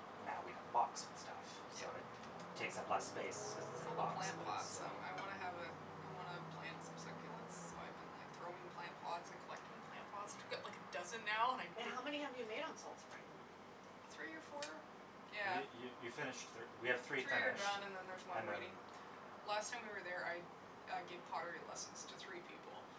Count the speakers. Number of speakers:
three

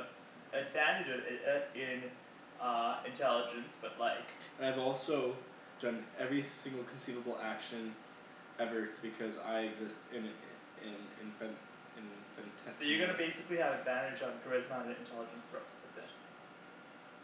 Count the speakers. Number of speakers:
two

